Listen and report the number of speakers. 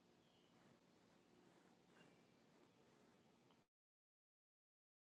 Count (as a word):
zero